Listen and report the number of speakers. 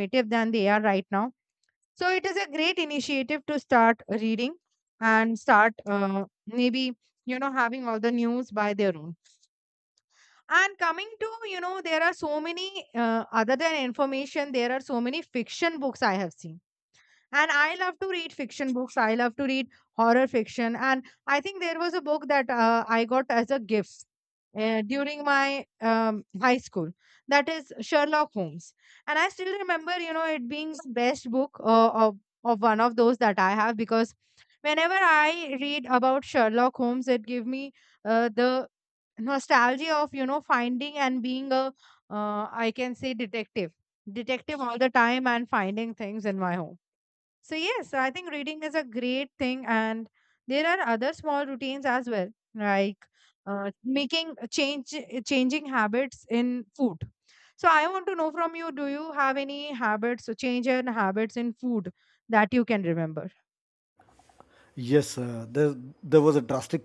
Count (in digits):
2